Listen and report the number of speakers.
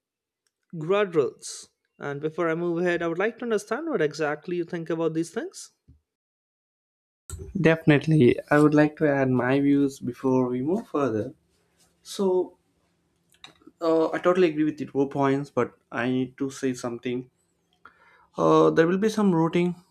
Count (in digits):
2